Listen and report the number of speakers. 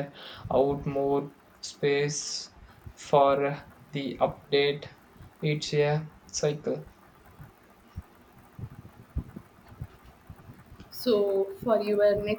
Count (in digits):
2